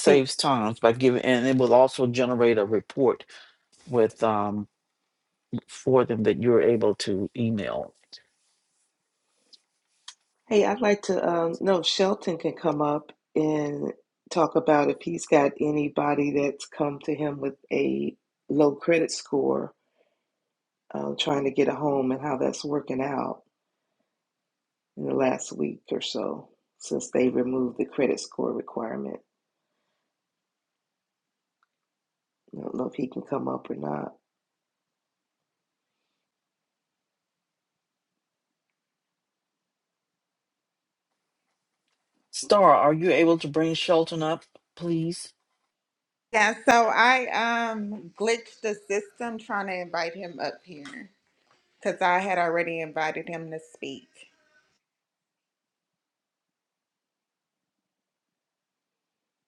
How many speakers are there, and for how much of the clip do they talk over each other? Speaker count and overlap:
3, under 1%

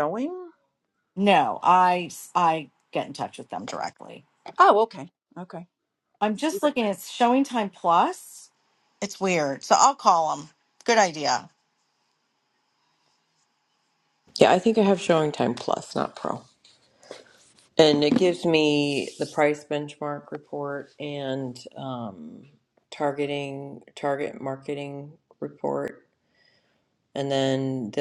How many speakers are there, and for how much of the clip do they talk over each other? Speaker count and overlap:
3, about 1%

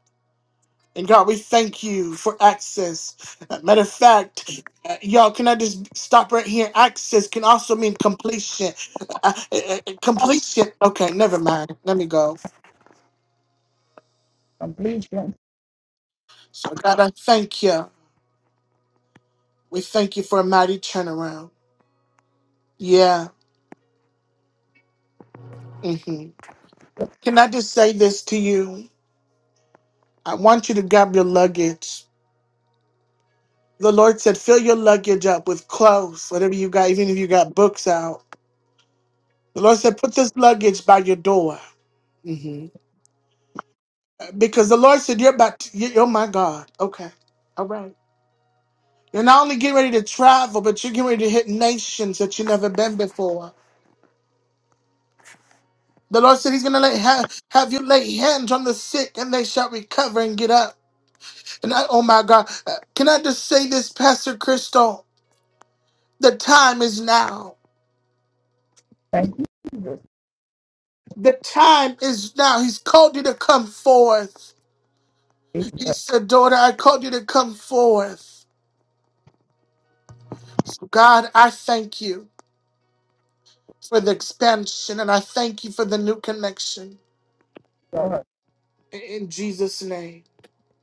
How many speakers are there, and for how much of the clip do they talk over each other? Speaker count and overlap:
2, under 1%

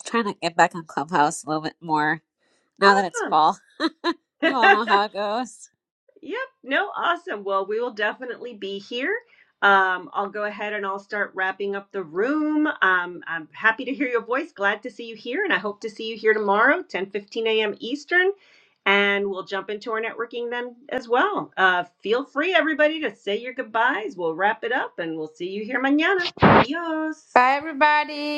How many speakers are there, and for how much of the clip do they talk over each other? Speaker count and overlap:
3, about 1%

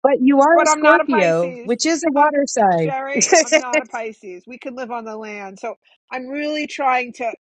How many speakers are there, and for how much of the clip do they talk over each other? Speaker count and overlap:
2, about 18%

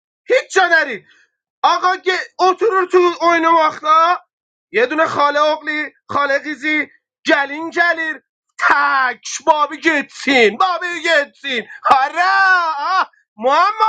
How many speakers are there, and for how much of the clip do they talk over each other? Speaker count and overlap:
1, no overlap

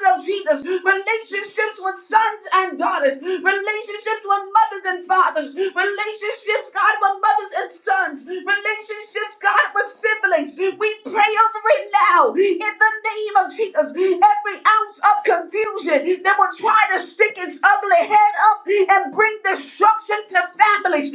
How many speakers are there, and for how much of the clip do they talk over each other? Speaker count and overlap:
1, no overlap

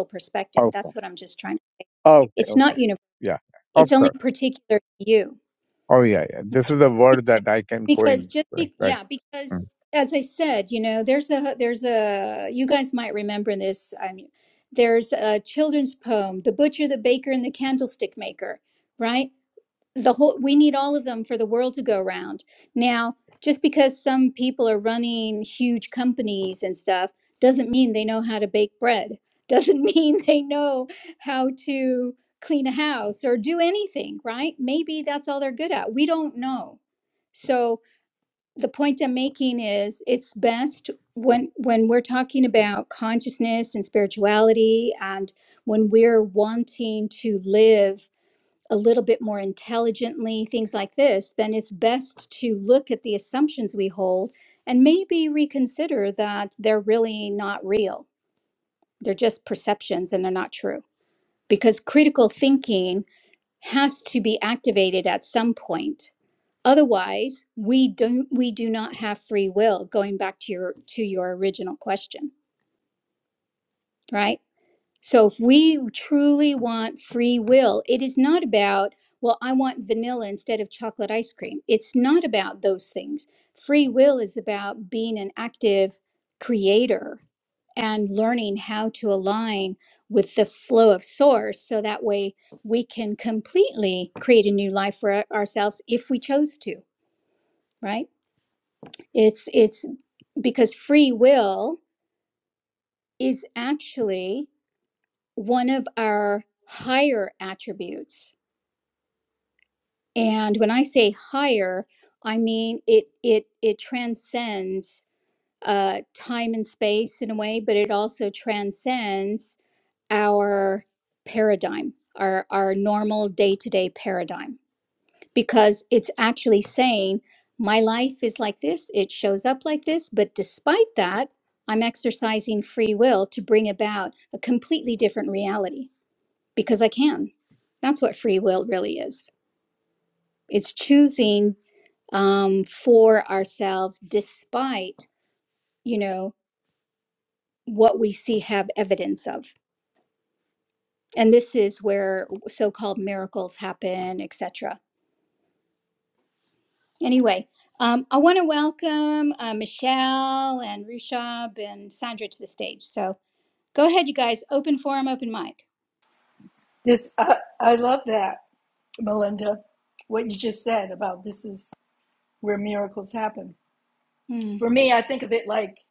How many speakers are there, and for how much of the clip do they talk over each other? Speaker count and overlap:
3, about 1%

